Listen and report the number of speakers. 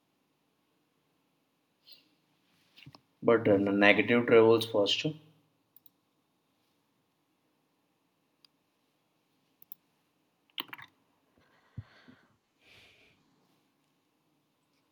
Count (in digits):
1